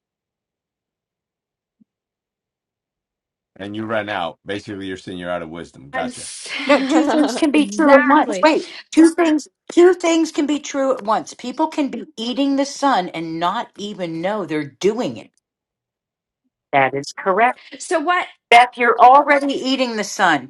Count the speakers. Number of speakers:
3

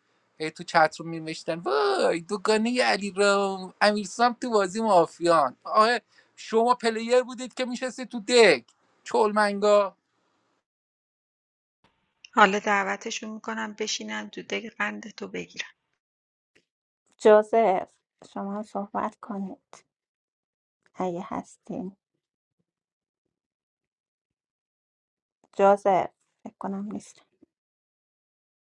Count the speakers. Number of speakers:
3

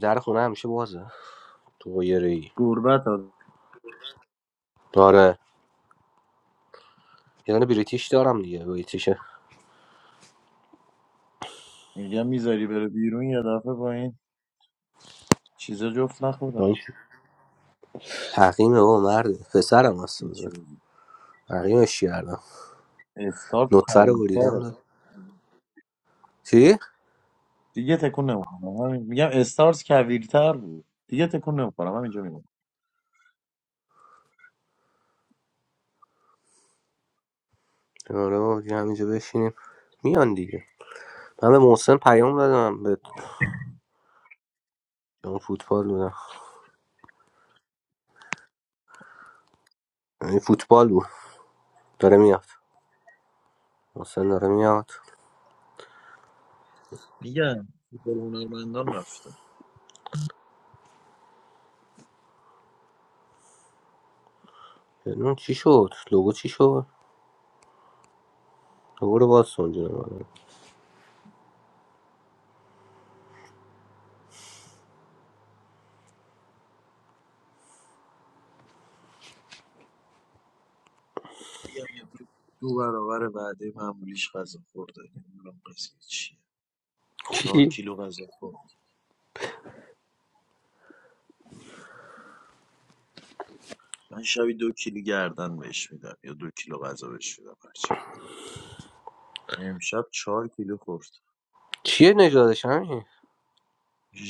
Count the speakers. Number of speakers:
2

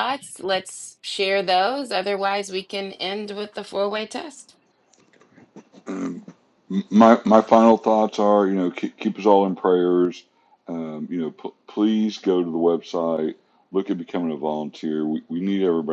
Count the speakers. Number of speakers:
2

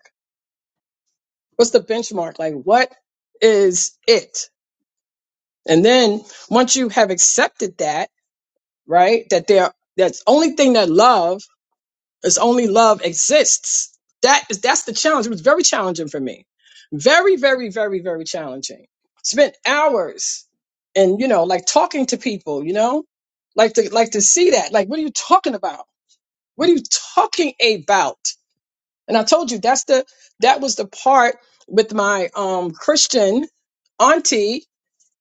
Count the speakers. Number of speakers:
1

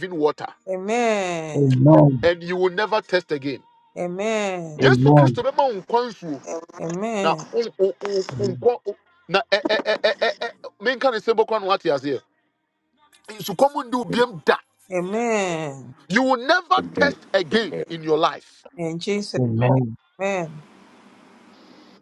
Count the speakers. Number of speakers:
3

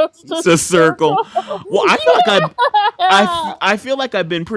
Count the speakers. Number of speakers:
2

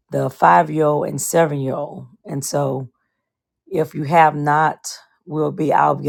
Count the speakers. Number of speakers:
1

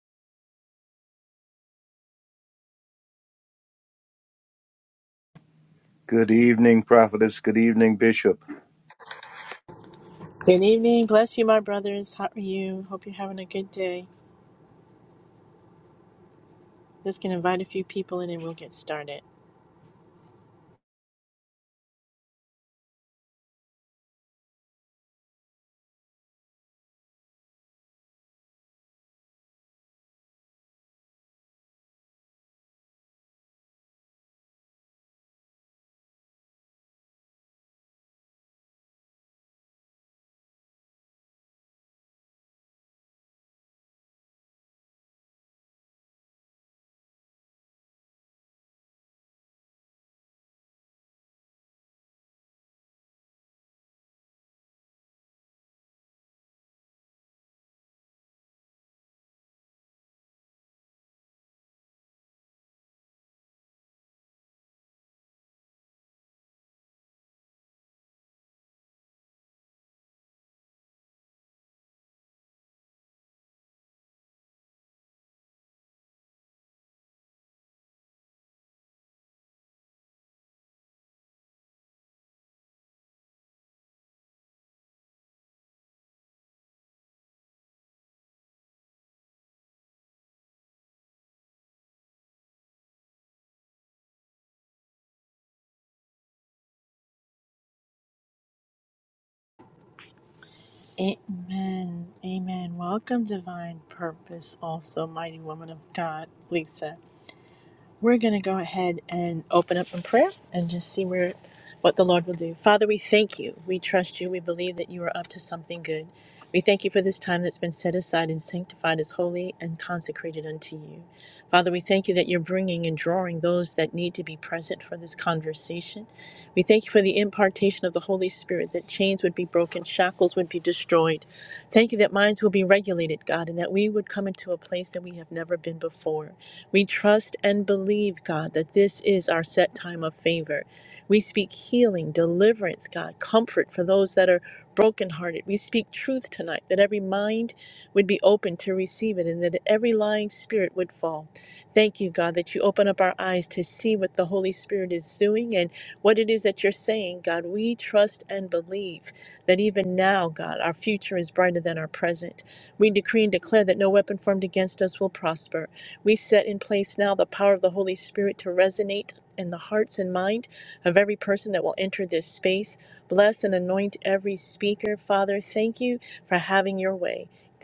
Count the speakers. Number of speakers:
2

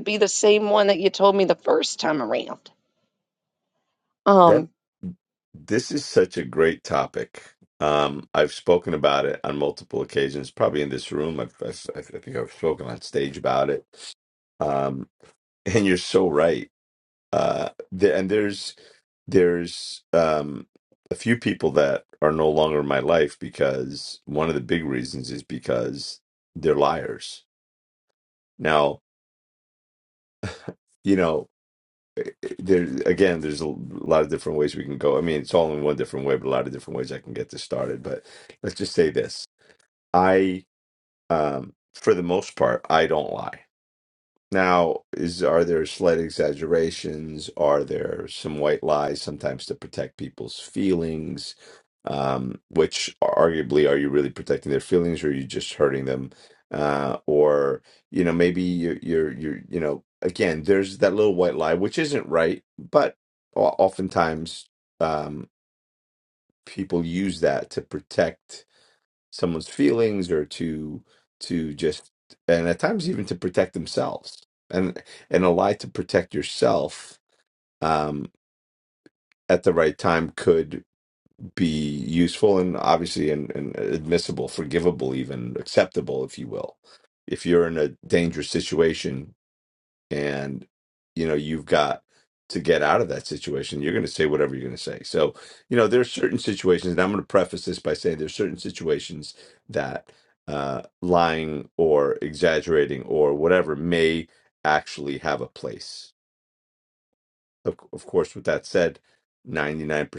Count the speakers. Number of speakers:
2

